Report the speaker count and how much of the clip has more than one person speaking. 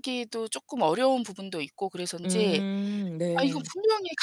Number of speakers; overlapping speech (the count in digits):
2, about 18%